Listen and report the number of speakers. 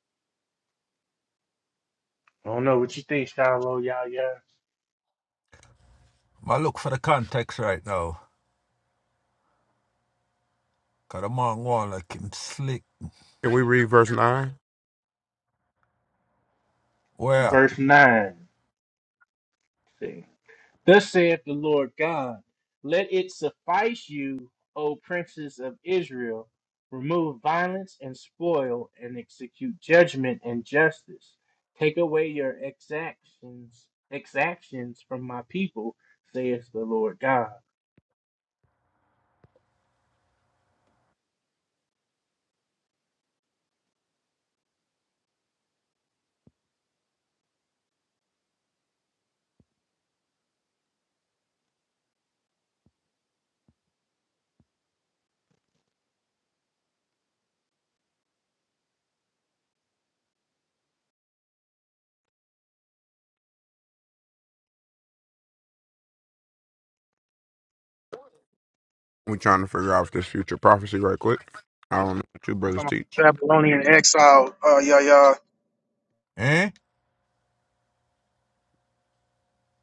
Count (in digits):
4